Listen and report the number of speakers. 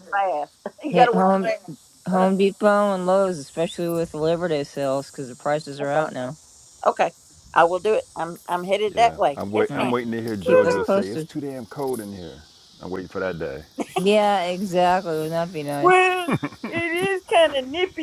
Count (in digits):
3